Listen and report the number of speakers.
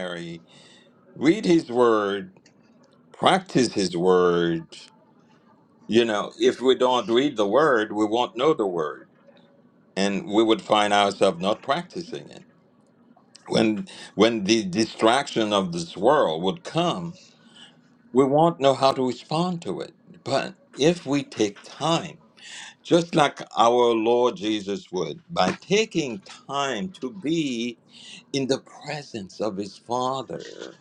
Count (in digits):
1